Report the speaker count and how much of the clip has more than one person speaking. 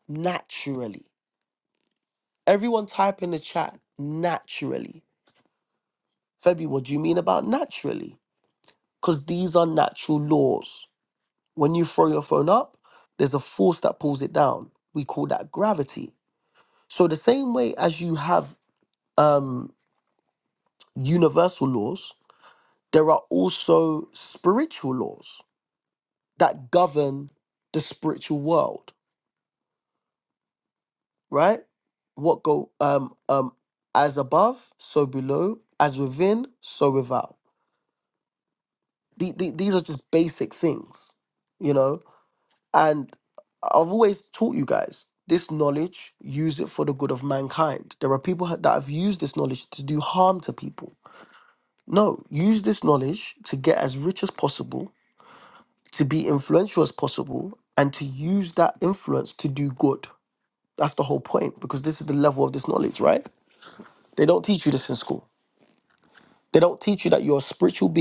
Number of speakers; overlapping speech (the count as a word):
one, no overlap